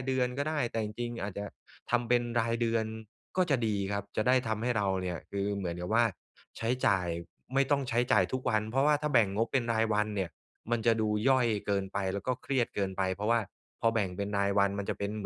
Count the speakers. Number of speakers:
1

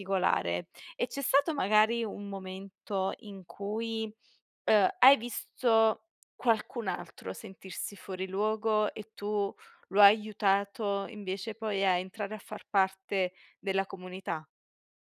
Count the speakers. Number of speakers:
1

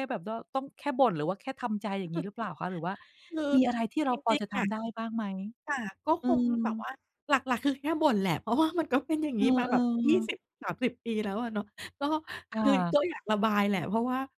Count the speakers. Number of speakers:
2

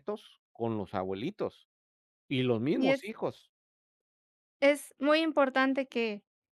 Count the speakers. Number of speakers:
2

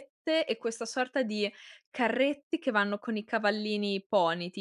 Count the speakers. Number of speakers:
1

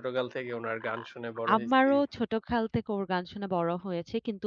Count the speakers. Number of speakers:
2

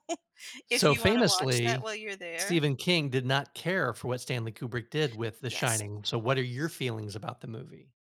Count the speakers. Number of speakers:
2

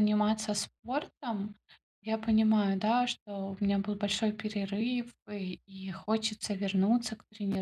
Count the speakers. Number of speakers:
1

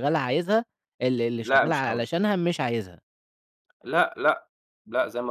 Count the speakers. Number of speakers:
2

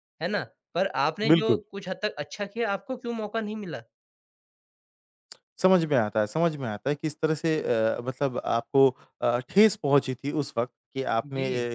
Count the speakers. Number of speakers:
2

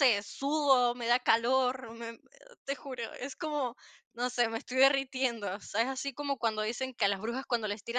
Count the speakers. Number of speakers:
1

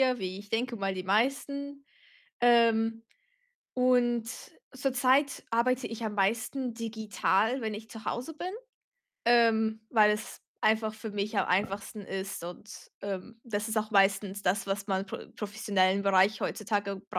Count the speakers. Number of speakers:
1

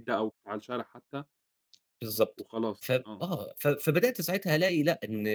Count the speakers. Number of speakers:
2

